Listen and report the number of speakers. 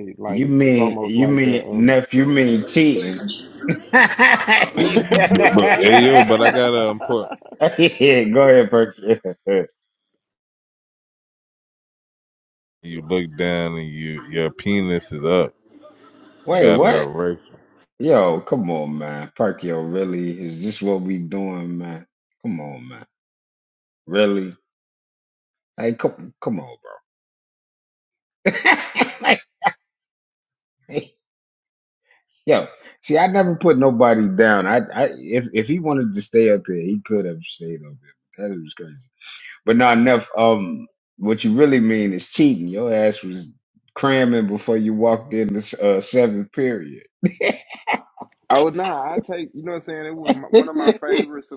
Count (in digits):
3